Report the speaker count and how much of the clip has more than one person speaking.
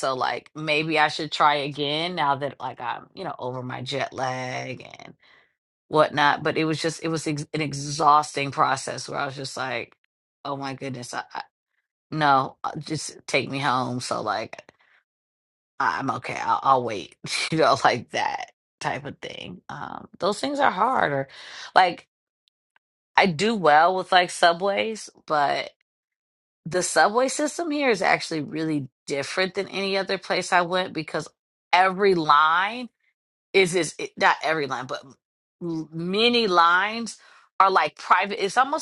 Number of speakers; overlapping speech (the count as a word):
one, no overlap